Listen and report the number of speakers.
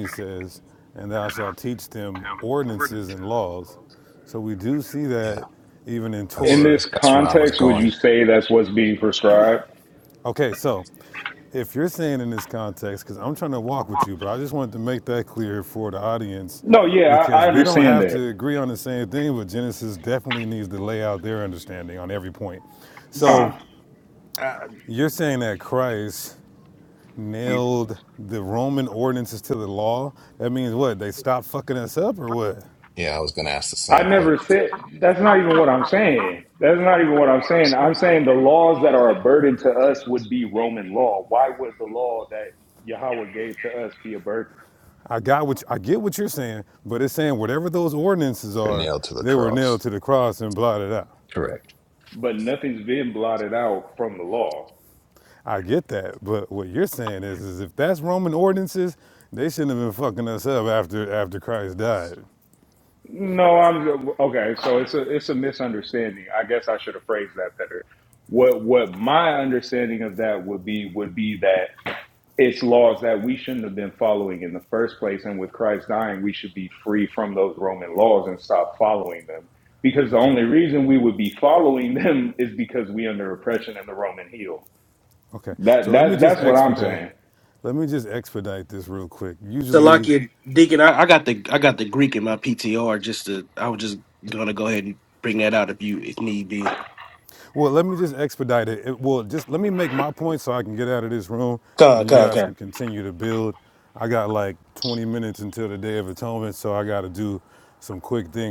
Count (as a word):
four